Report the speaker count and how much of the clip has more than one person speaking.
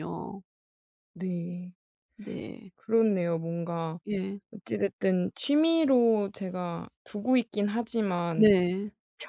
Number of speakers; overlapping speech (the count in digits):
2, about 1%